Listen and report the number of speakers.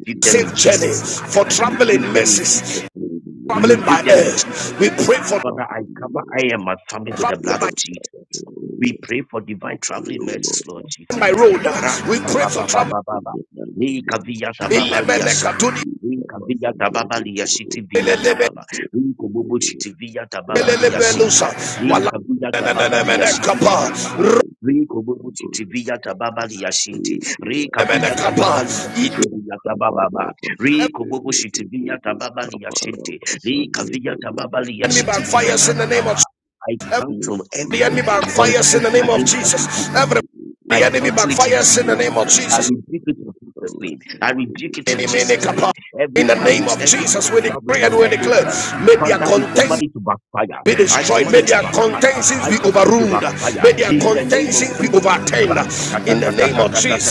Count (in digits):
3